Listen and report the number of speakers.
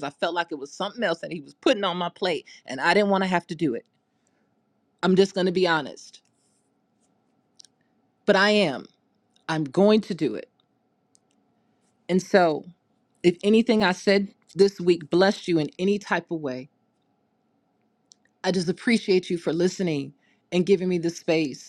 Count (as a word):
one